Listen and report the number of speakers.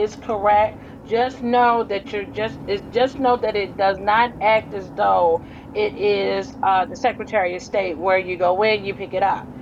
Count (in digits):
1